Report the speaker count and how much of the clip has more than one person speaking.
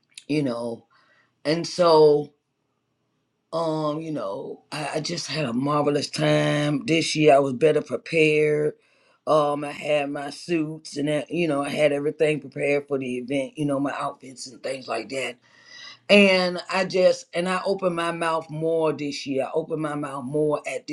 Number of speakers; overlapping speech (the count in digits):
1, no overlap